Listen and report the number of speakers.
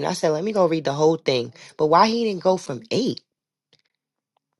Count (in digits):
1